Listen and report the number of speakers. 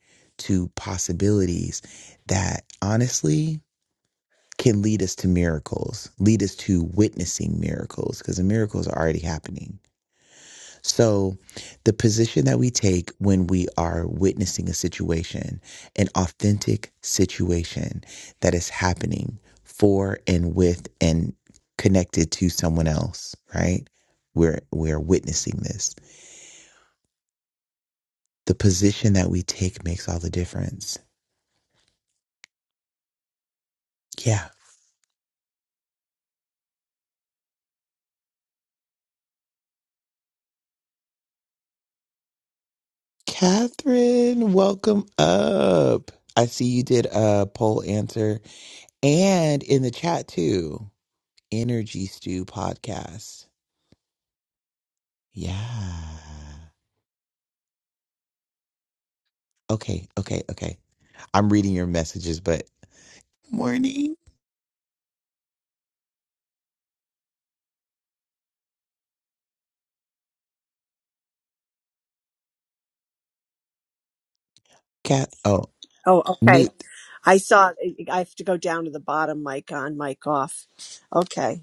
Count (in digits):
2